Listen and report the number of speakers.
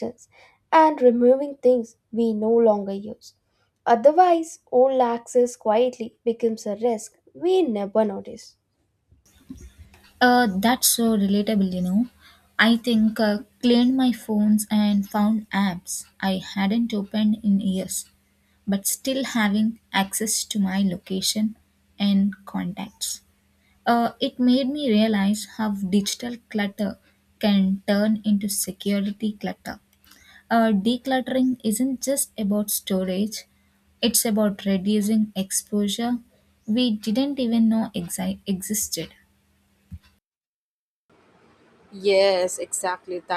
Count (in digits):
3